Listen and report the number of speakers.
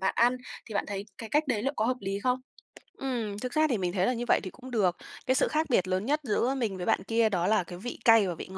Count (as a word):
two